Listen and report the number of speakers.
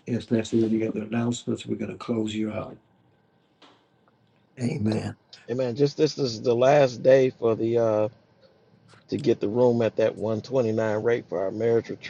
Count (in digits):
2